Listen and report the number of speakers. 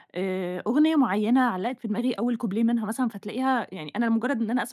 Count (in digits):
1